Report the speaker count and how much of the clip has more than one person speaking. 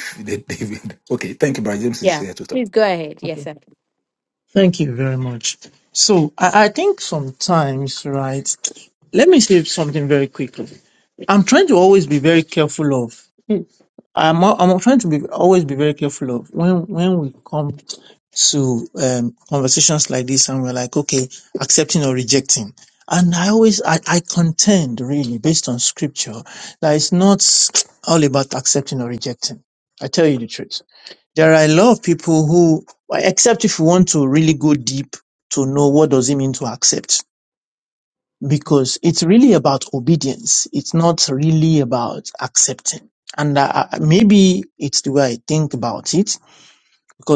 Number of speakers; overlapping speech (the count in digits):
3, about 1%